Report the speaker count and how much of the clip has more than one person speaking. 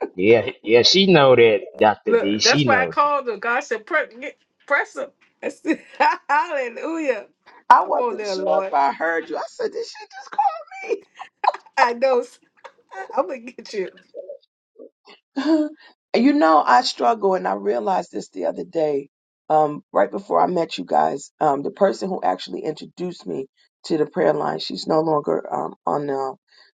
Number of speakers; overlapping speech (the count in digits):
3, about 7%